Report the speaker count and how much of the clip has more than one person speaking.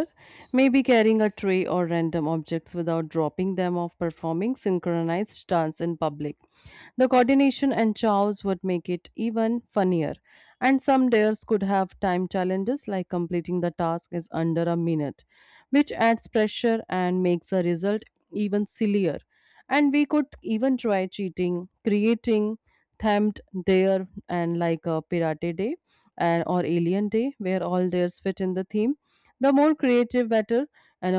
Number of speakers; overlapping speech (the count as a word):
one, no overlap